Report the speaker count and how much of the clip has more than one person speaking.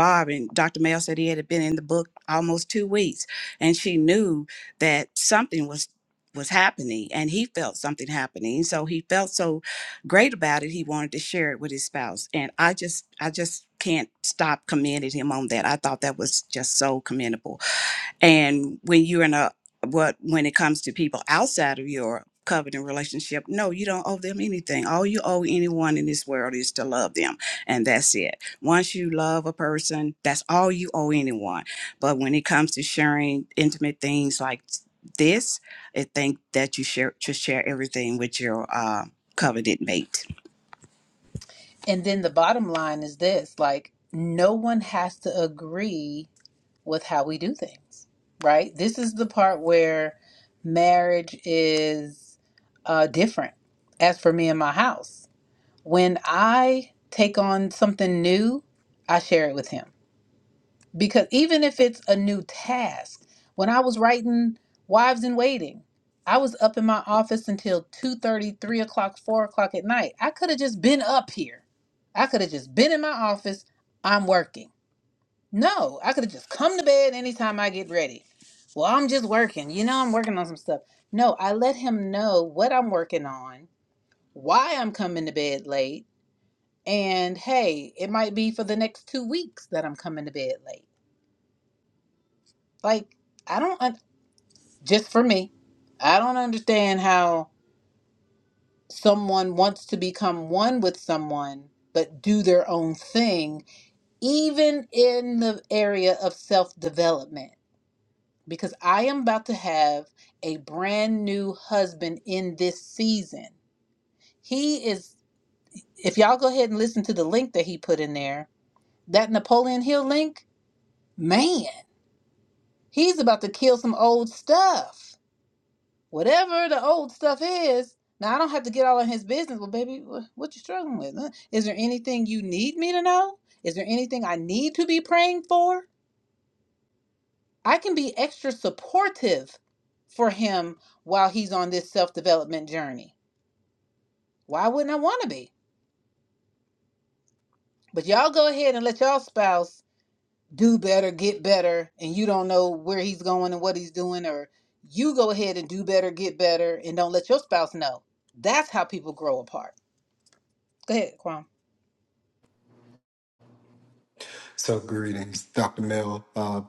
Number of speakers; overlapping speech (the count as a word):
three, no overlap